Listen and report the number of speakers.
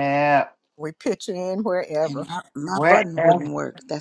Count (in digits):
3